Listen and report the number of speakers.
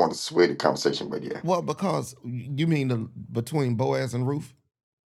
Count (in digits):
2